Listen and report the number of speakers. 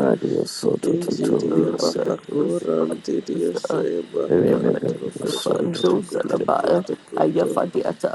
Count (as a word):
three